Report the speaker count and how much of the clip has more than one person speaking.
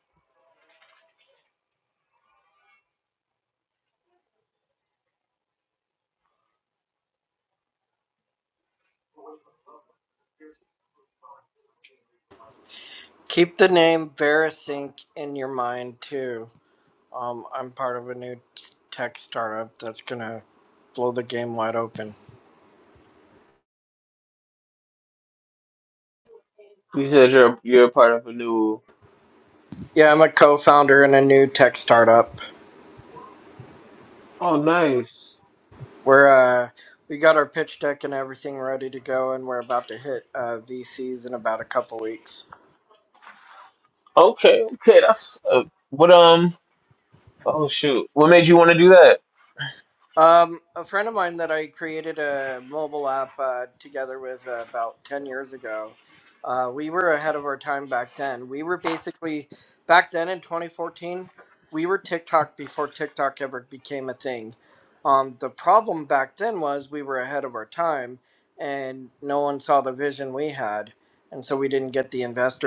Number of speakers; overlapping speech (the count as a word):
two, no overlap